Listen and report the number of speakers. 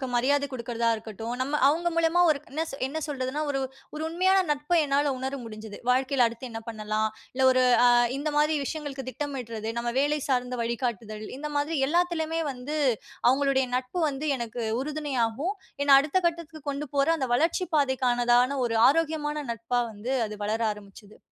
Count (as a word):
one